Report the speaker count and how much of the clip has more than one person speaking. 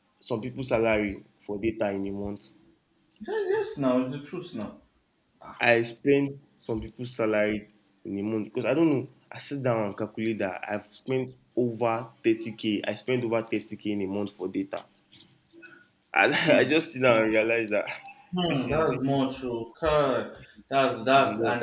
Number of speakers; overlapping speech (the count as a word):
two, about 6%